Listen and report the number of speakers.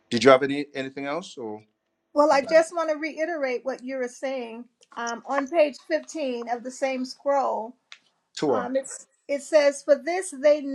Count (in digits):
2